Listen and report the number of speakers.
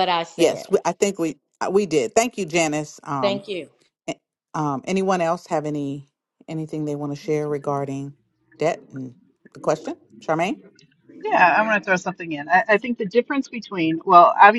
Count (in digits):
3